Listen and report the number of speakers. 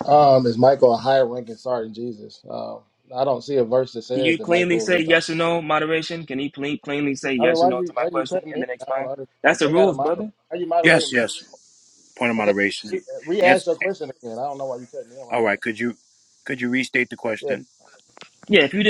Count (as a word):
three